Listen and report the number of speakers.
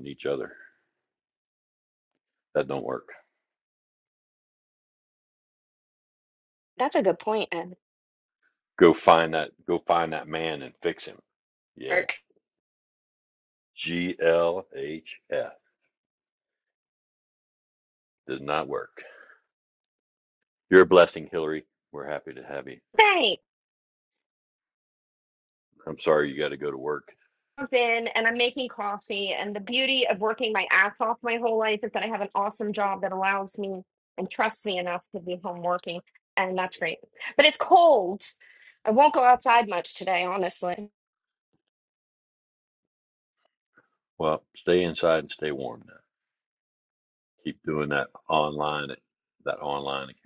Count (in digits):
2